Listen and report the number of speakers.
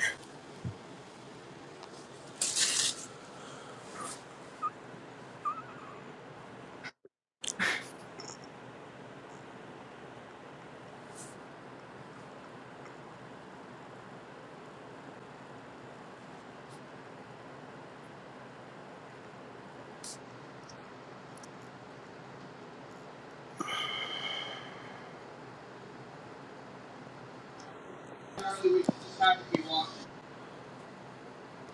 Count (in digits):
0